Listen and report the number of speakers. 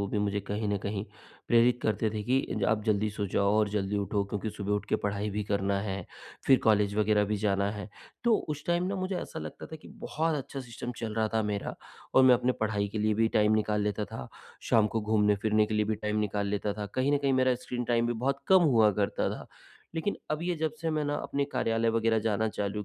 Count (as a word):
one